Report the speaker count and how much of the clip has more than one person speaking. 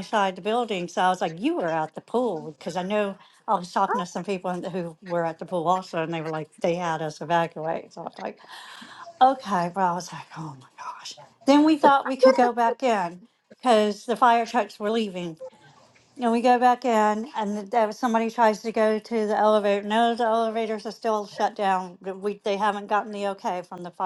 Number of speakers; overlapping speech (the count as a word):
one, no overlap